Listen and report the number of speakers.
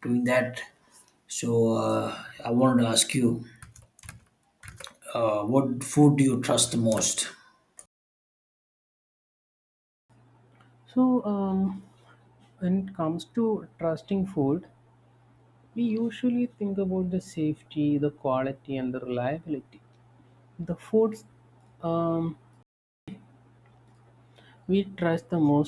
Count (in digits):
2